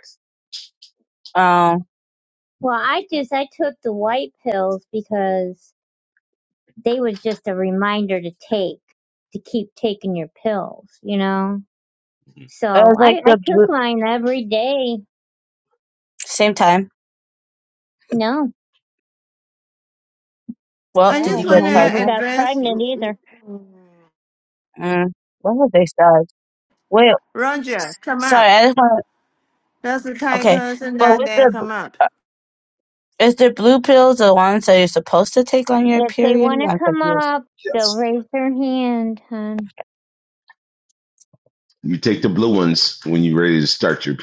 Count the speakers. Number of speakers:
4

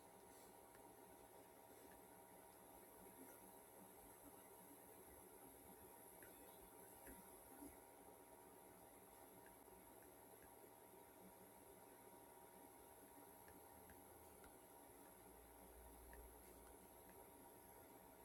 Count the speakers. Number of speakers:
0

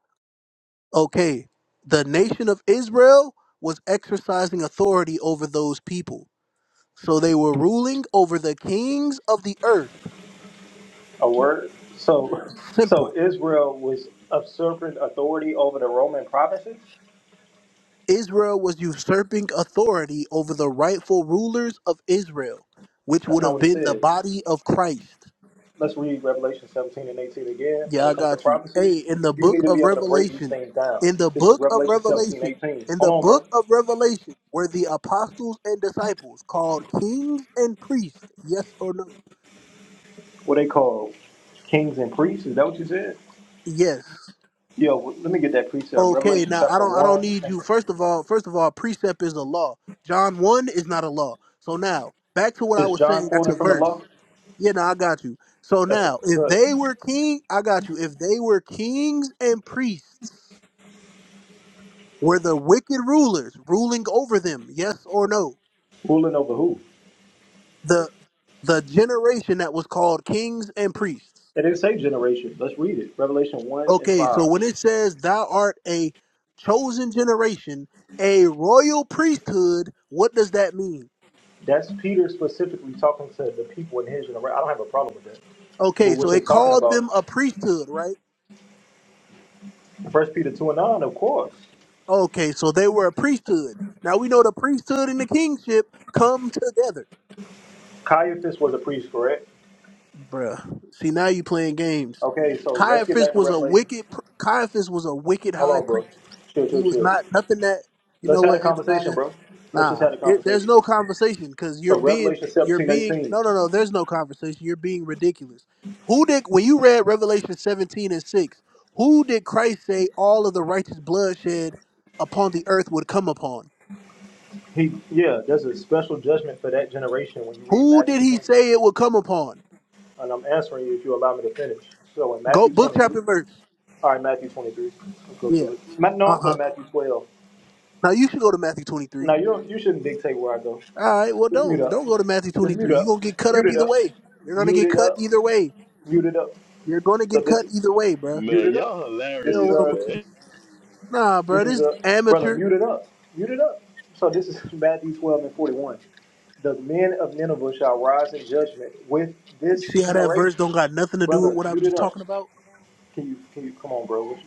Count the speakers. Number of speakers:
3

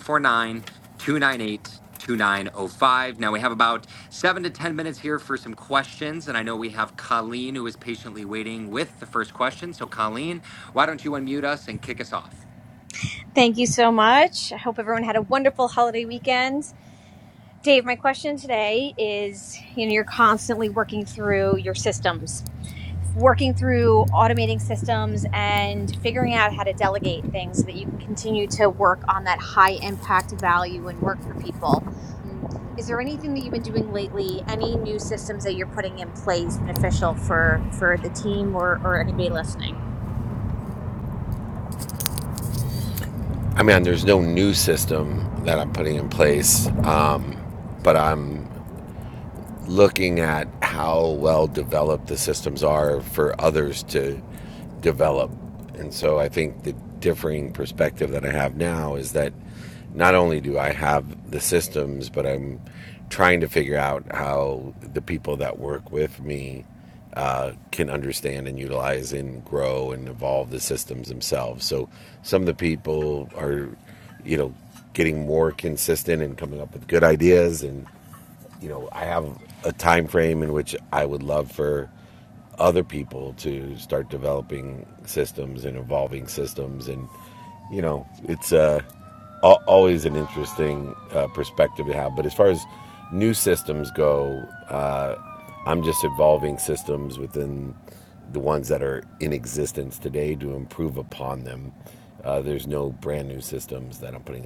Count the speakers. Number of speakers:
3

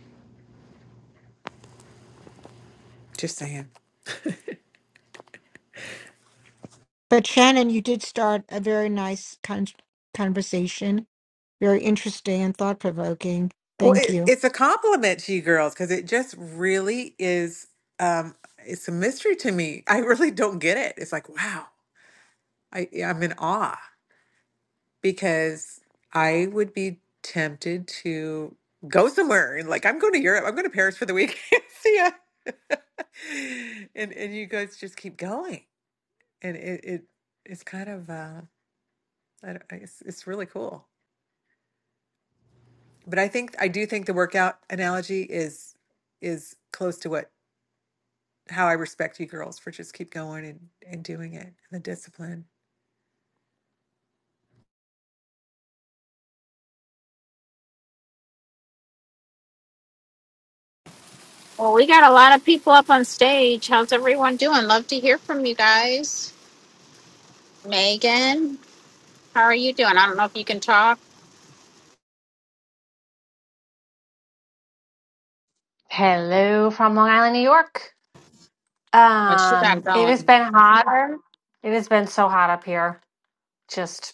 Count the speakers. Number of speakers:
4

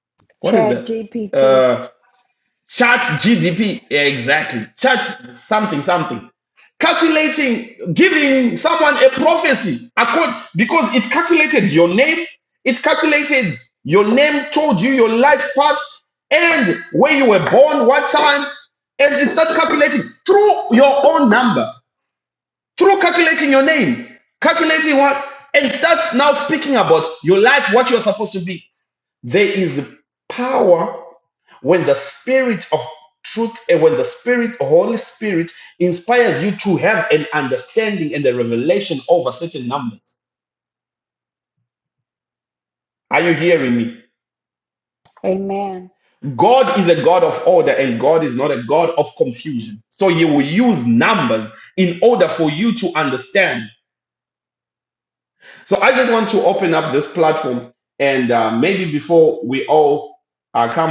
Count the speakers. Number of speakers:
2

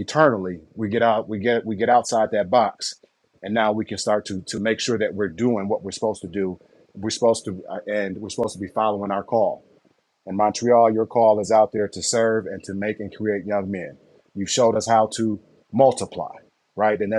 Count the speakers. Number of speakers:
1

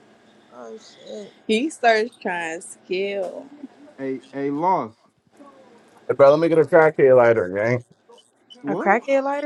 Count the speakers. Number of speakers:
4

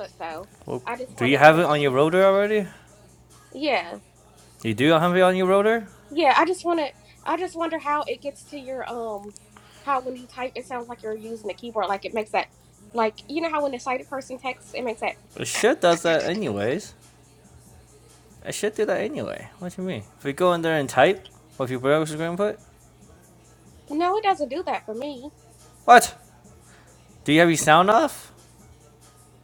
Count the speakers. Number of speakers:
2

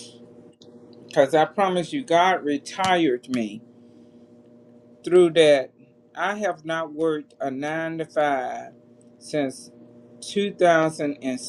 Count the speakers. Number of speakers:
1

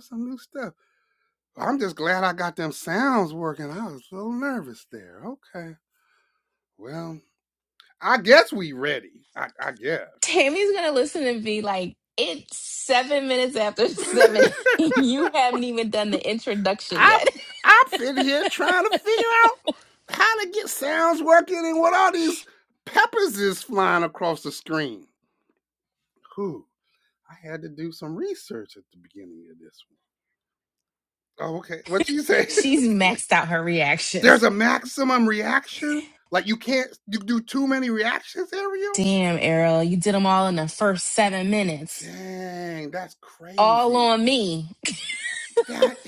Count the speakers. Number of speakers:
2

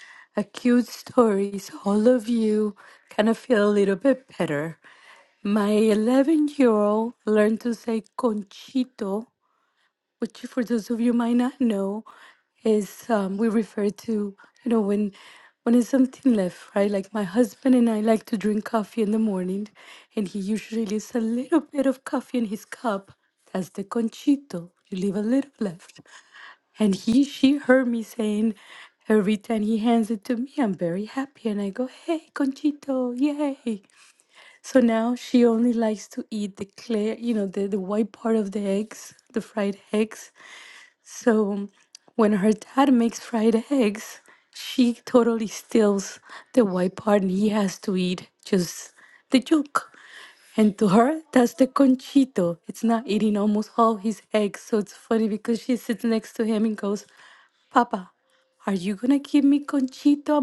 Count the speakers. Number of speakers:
1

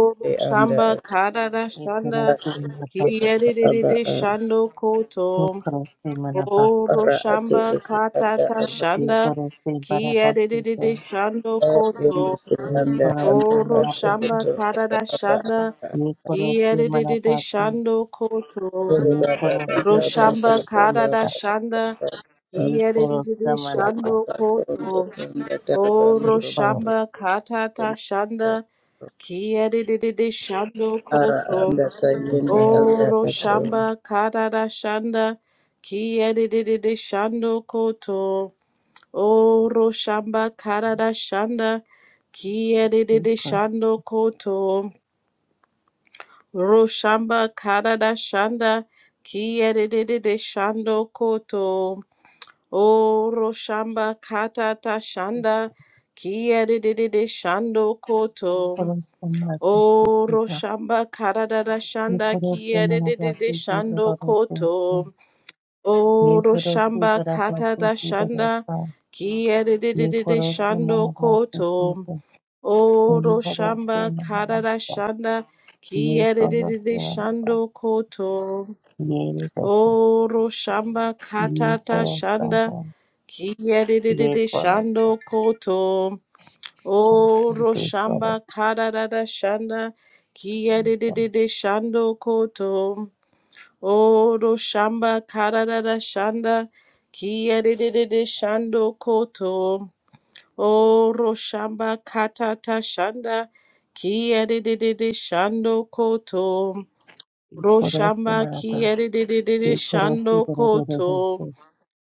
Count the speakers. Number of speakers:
3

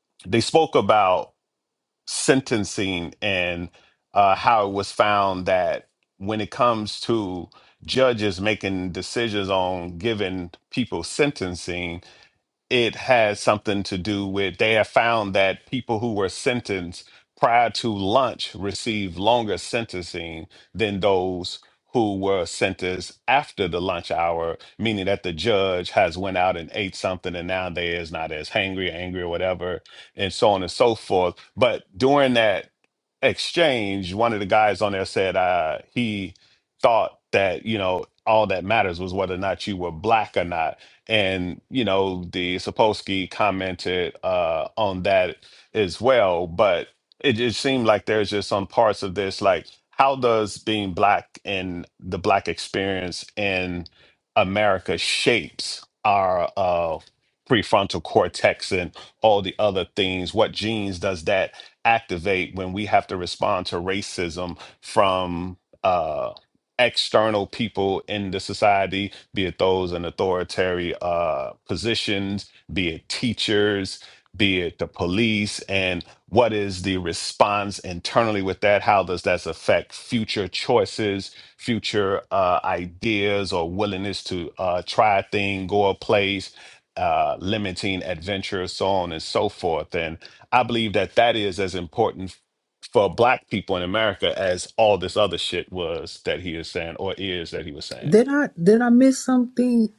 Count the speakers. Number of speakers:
2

